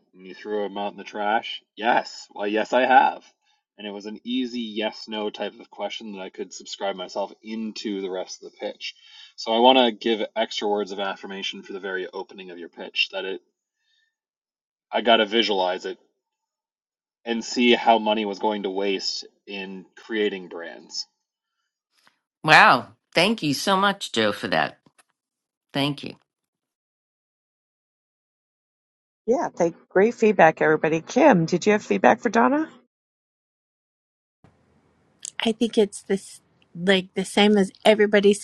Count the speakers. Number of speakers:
four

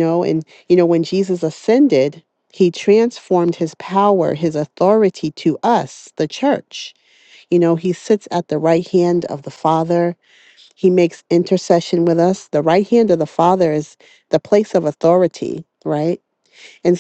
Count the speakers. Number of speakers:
one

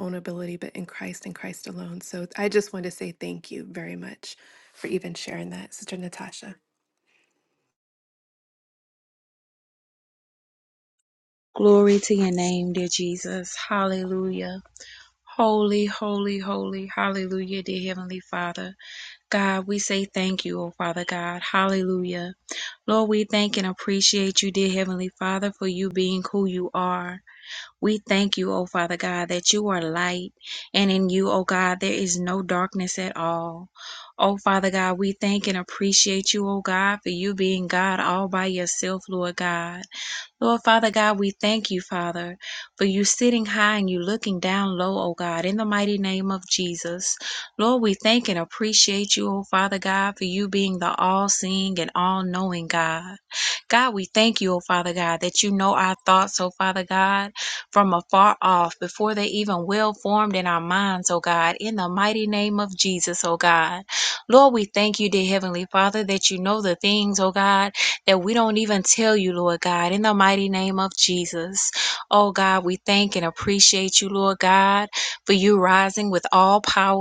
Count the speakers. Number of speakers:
two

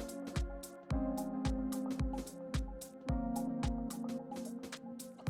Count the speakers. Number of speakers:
zero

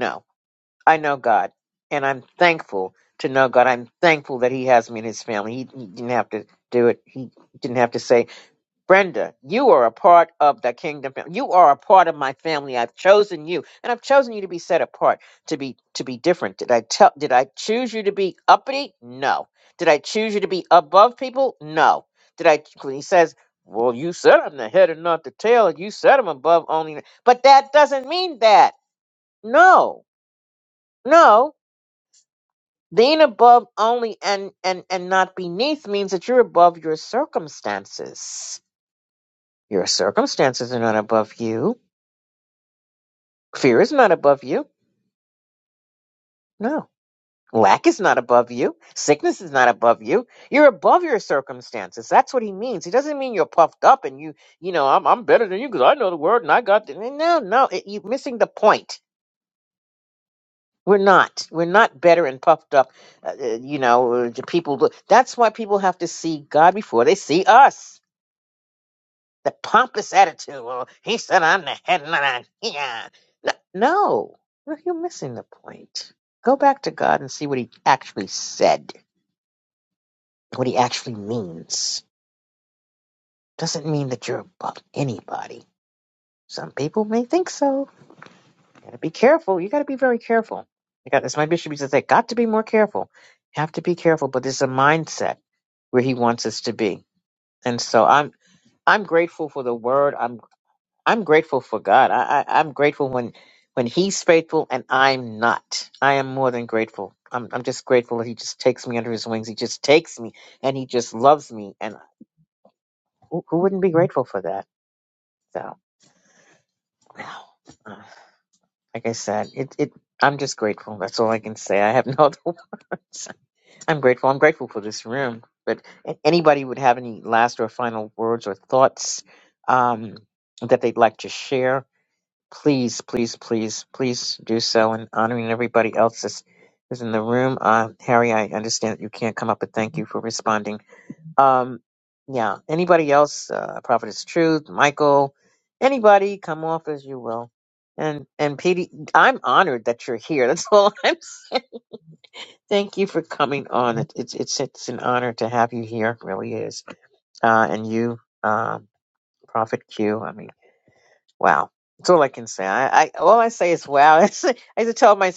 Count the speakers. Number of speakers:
one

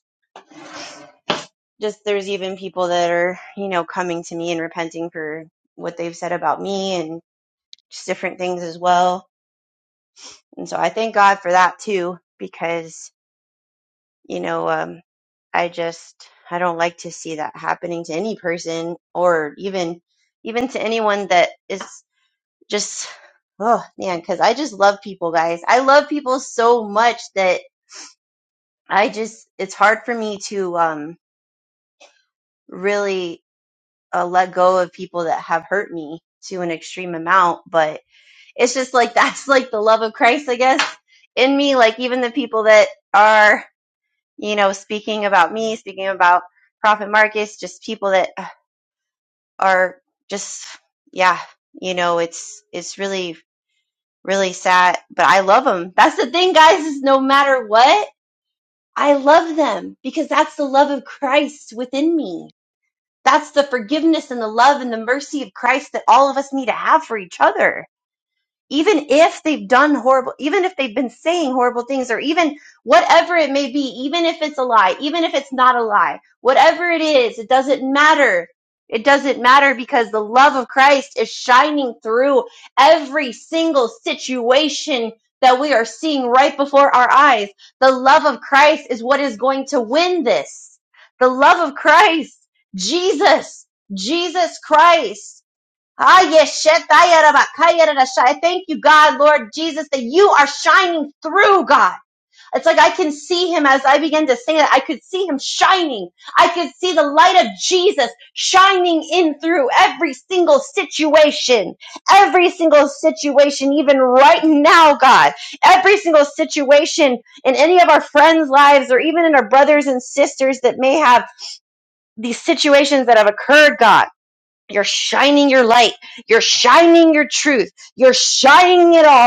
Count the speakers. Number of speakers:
one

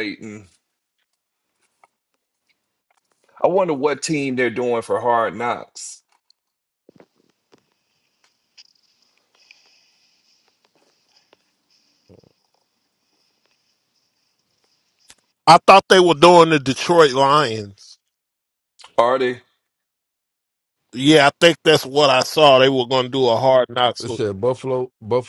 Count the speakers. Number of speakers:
three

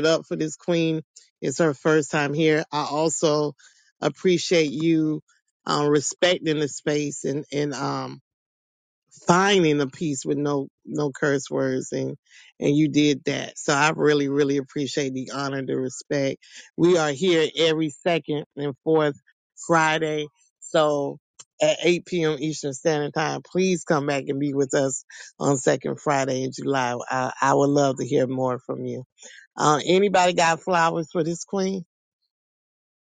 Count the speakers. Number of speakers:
one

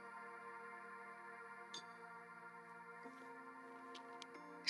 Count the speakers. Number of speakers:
zero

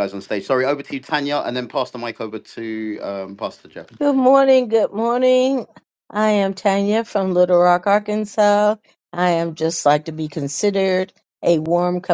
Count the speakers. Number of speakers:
two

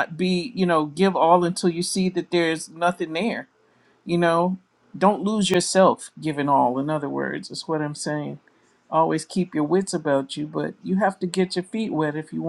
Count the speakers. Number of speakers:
one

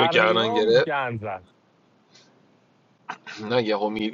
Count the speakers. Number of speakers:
two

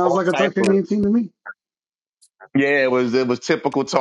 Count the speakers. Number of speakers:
two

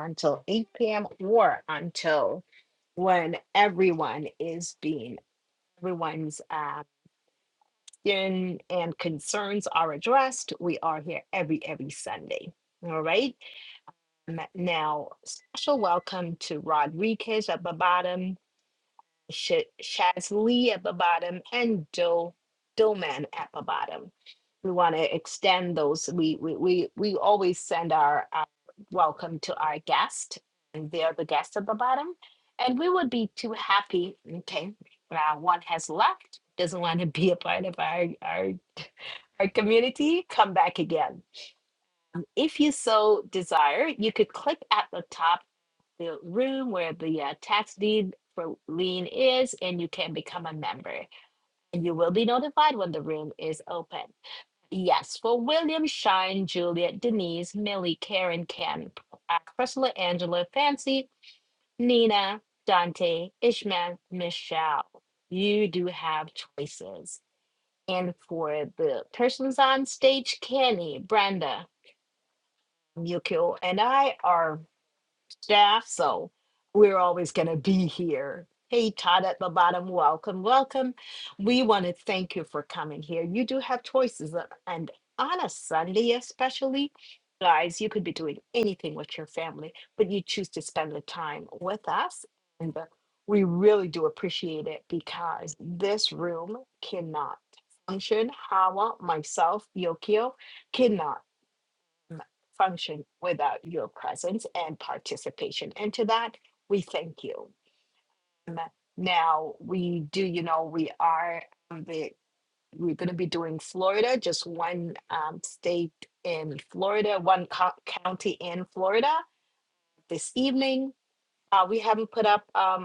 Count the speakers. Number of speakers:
one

